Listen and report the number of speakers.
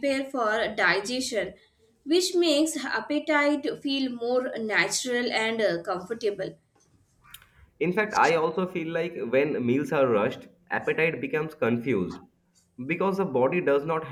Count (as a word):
two